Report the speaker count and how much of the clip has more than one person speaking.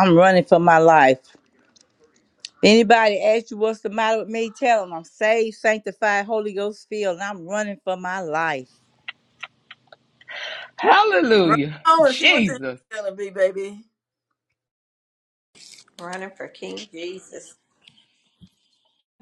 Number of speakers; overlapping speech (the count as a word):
four, about 6%